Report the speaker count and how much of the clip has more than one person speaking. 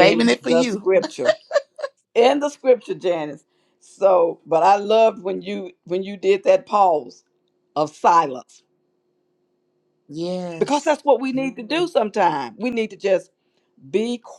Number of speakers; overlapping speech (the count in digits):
2, about 7%